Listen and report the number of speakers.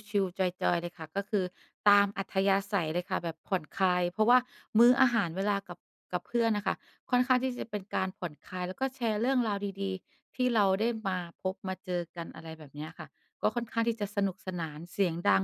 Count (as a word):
one